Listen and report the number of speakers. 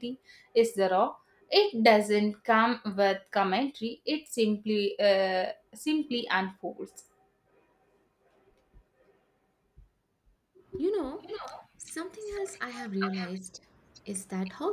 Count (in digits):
2